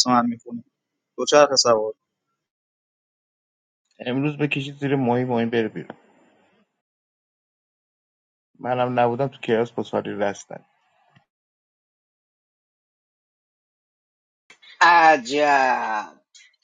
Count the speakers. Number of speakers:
three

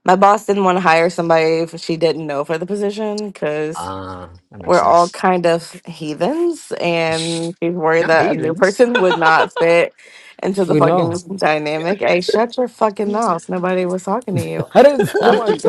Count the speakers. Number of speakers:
three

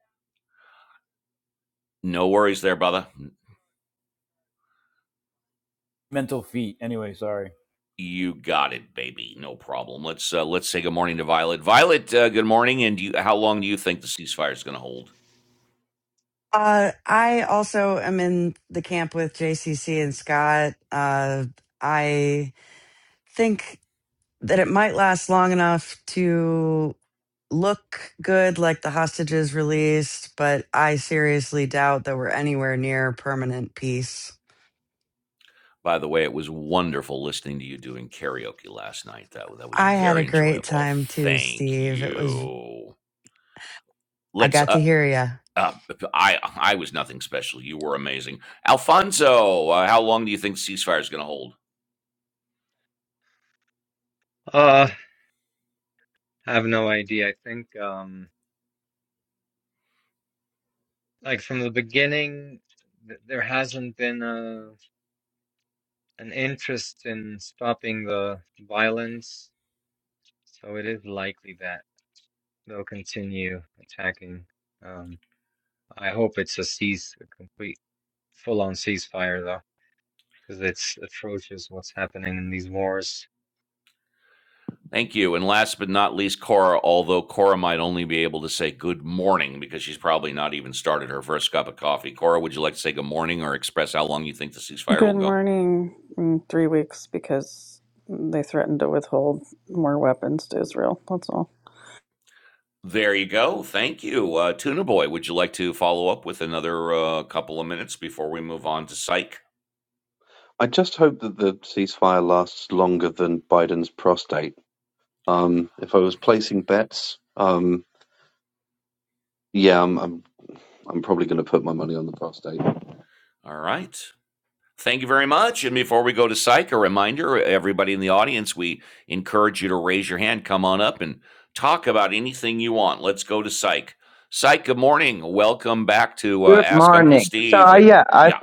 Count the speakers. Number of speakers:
seven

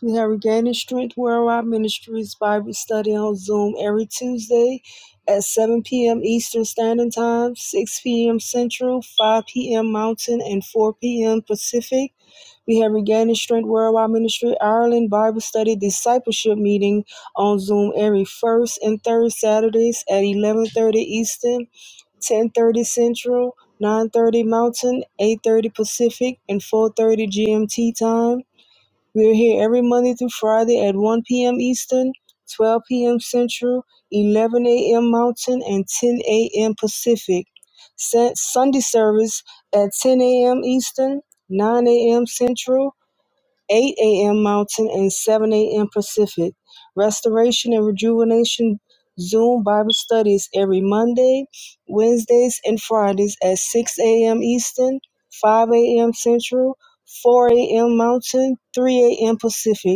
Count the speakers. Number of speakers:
one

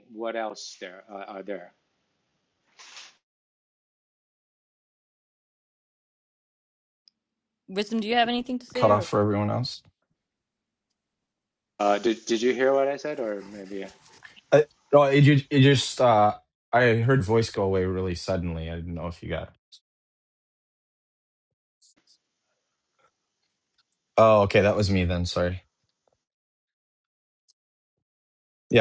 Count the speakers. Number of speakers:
three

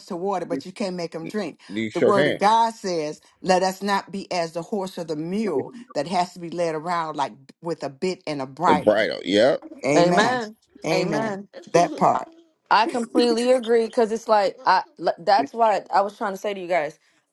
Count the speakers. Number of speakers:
three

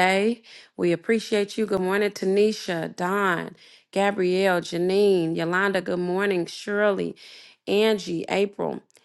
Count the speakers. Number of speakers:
one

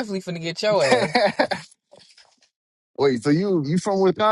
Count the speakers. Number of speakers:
two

